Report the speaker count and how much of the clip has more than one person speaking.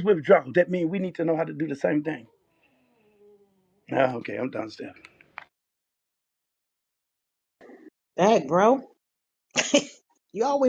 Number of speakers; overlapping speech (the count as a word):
two, no overlap